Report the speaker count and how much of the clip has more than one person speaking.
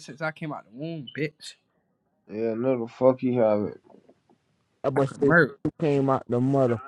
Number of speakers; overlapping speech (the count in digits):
3, about 6%